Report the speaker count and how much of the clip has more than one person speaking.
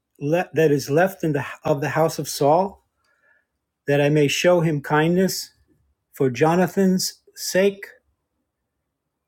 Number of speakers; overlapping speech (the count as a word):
one, no overlap